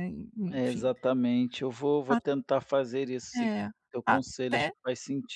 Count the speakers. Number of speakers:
two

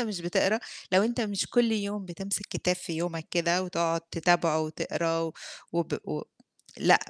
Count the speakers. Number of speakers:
one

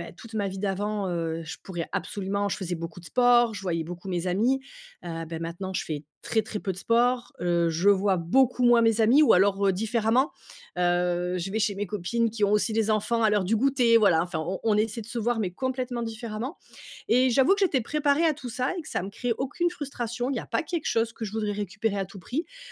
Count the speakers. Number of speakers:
one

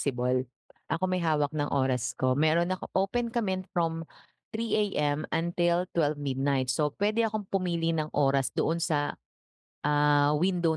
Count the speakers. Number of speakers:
one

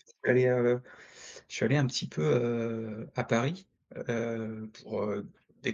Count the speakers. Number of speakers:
one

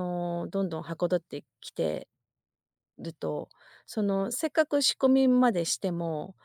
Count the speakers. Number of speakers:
one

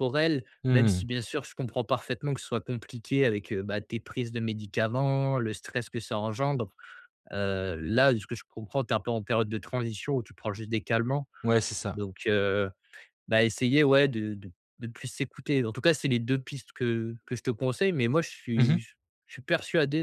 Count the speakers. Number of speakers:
two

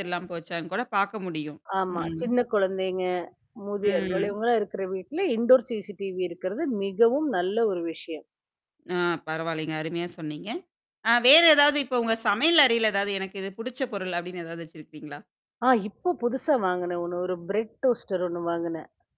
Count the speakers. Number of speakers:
two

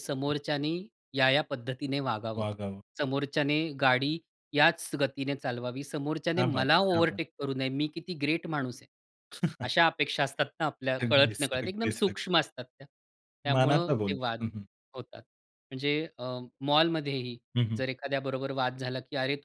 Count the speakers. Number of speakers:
two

